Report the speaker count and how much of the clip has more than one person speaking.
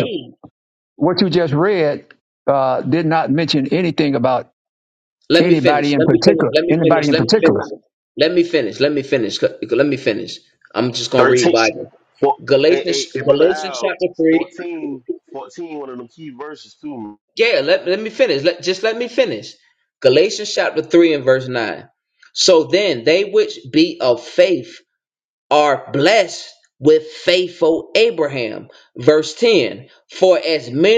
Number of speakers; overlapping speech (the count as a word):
three, about 14%